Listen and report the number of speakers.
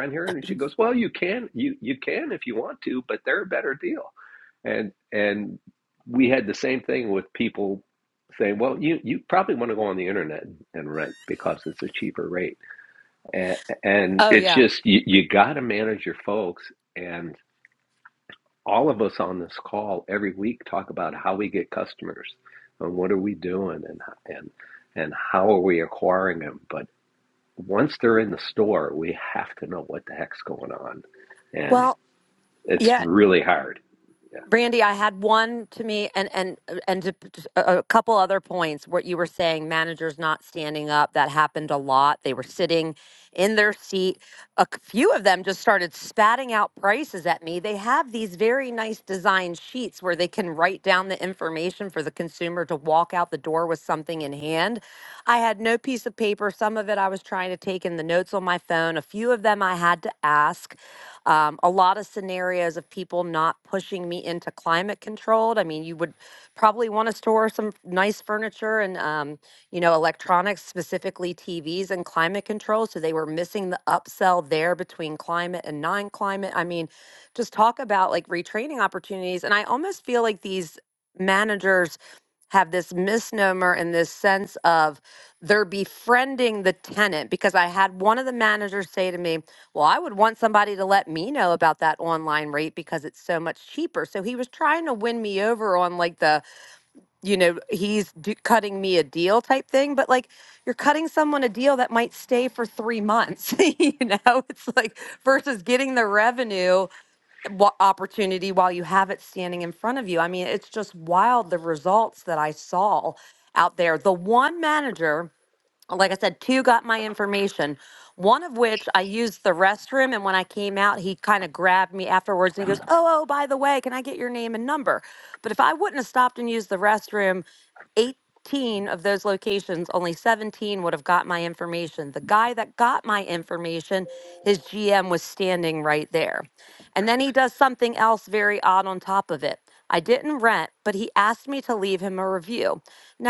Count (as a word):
two